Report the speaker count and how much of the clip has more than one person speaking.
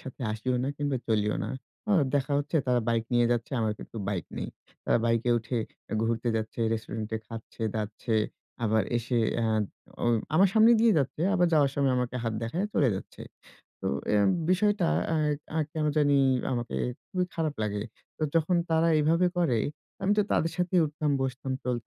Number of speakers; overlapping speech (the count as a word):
one, no overlap